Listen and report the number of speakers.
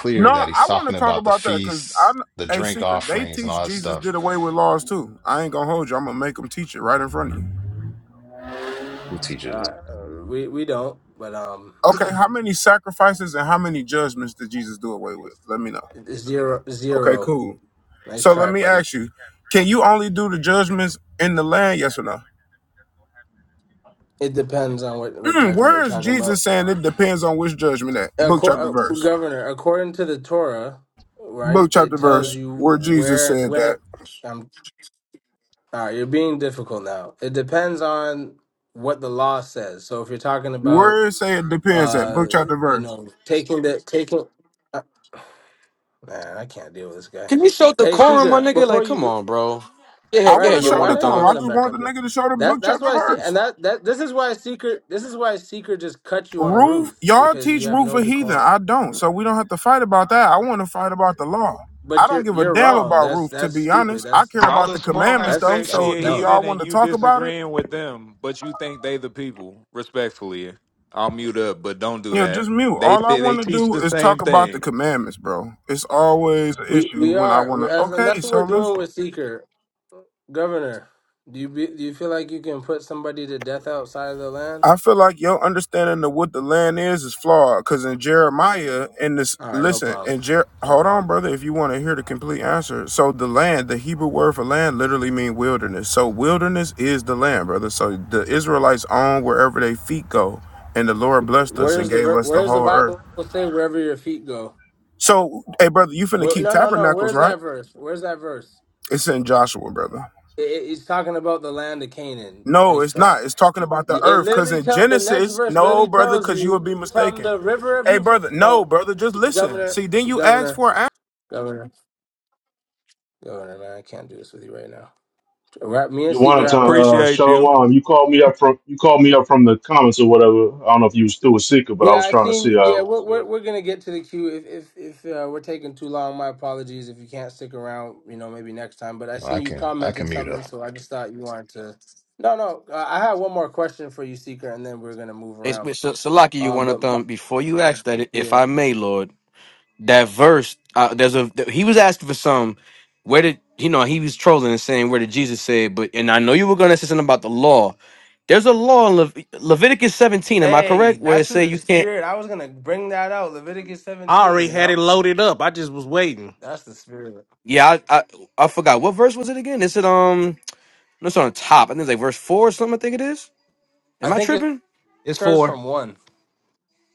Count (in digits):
7